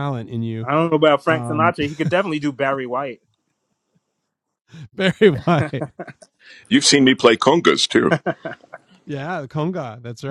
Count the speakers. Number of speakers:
3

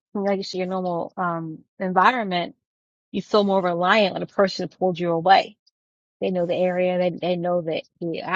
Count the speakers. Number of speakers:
1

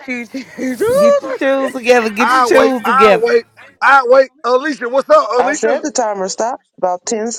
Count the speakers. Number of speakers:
4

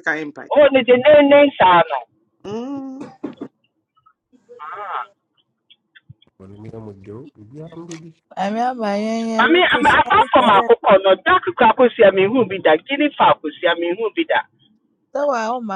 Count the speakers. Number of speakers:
4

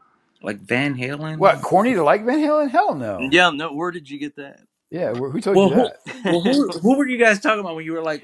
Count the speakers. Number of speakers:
3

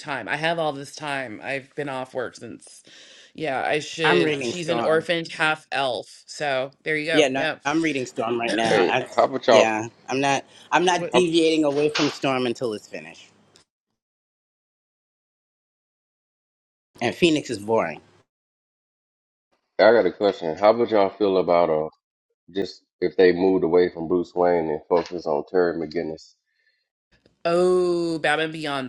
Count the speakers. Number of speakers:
3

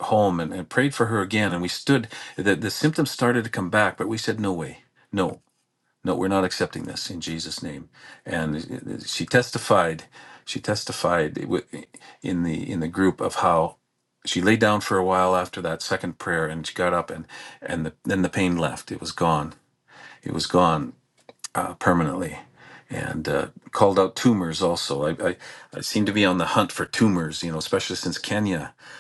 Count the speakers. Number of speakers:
1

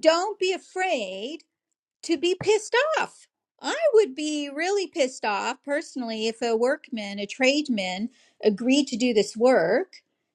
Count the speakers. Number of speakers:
1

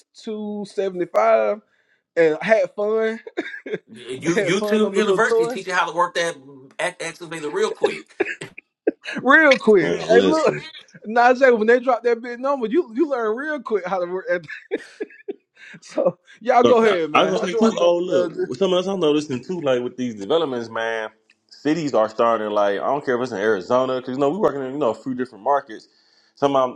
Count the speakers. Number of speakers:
3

